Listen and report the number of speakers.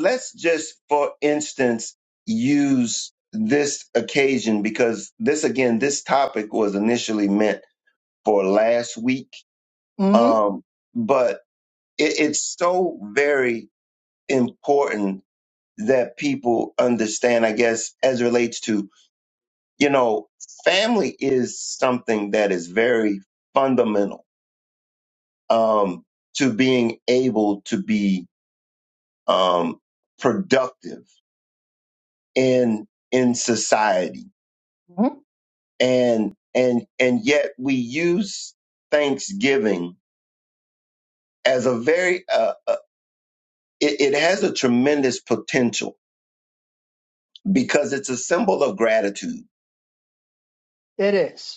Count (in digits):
2